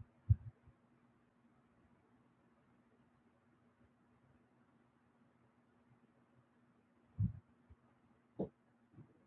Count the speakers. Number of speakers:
0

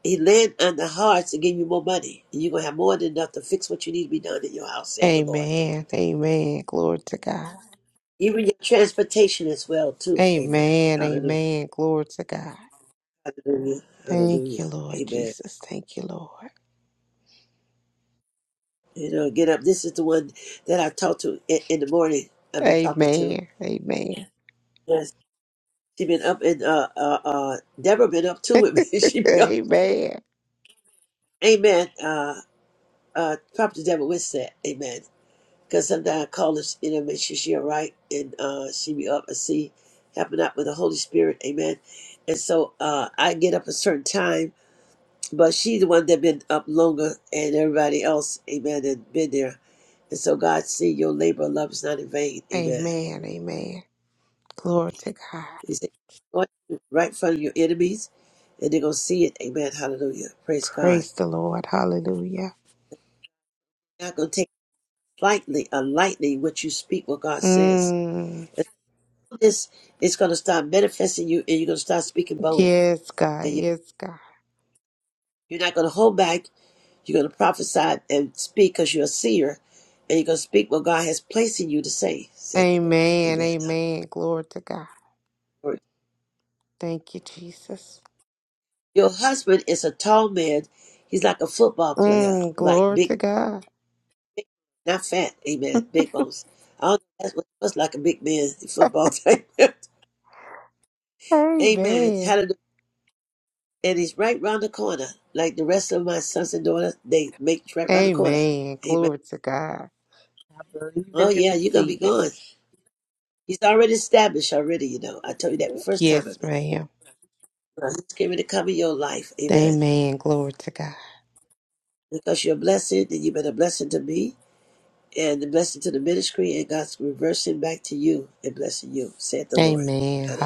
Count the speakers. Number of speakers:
2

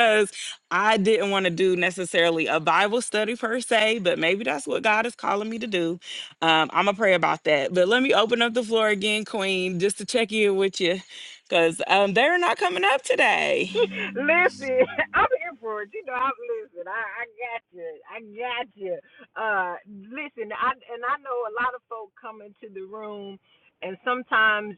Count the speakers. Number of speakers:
2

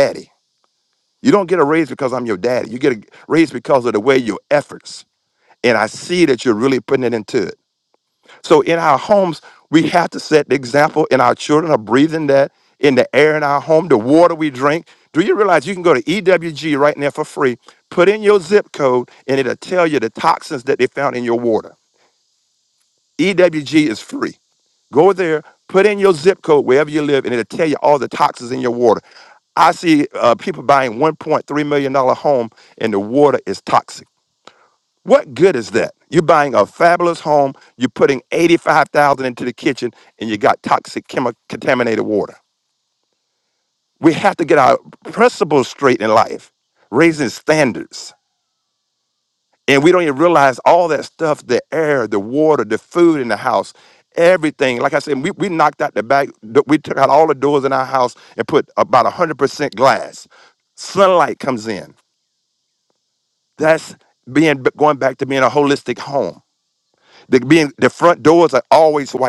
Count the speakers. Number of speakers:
1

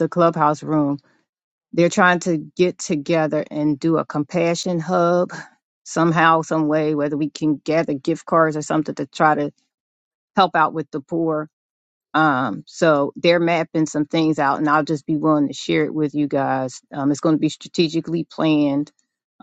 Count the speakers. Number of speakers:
1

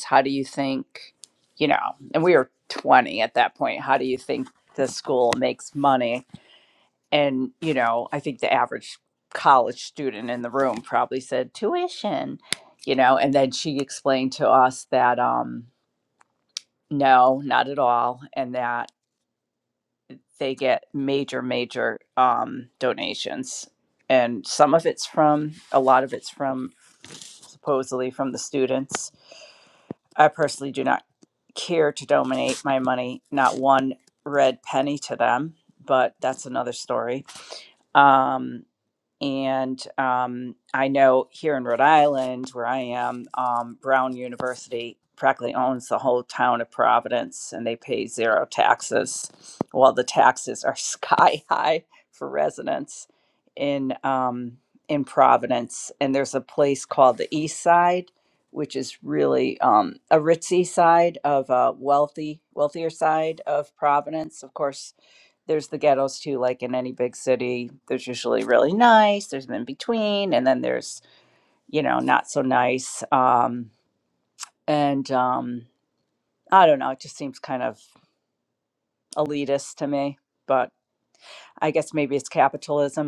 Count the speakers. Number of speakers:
1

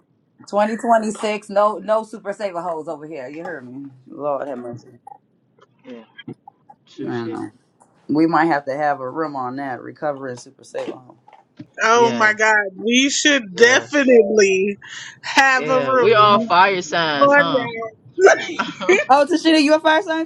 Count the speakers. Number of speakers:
3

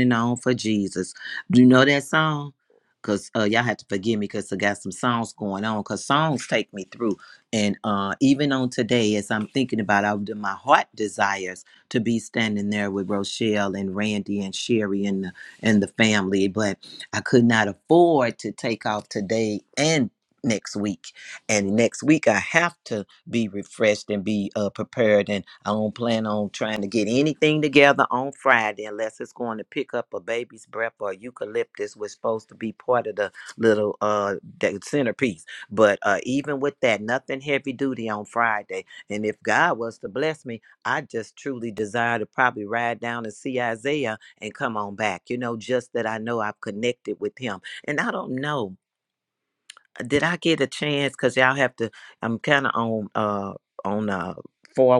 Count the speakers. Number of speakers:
1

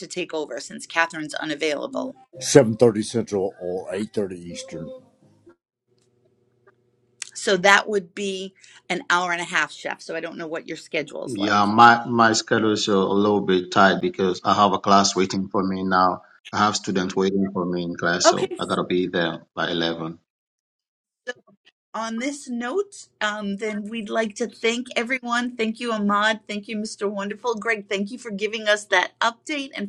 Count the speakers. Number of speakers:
3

